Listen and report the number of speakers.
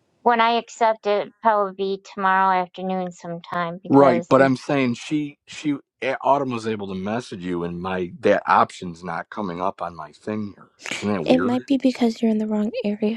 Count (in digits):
3